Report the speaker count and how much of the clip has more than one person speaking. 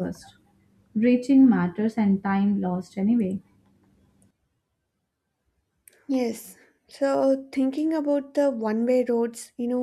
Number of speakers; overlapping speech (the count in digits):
2, no overlap